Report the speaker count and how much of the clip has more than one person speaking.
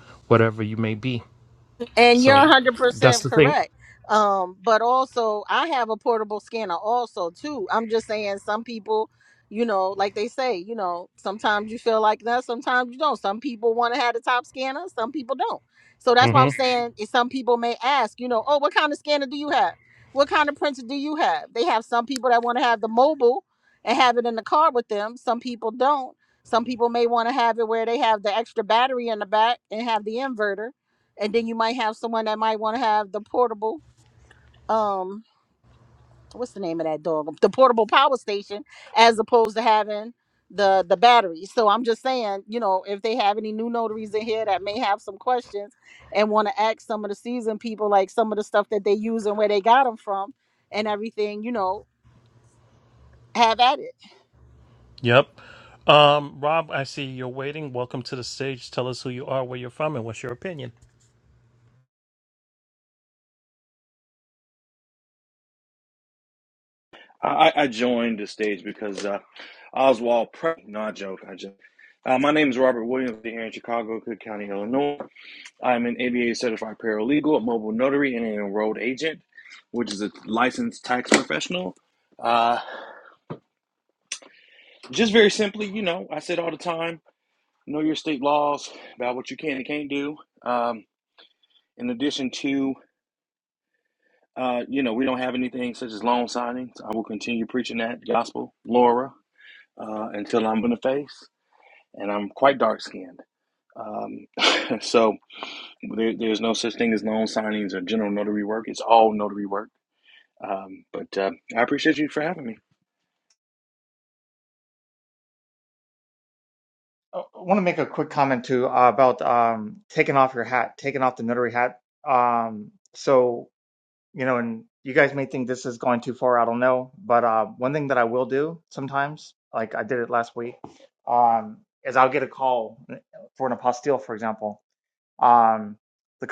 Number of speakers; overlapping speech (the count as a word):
four, about 1%